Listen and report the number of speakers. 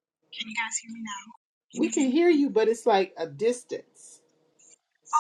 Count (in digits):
2